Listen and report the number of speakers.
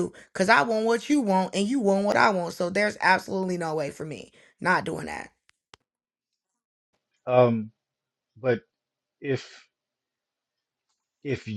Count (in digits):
2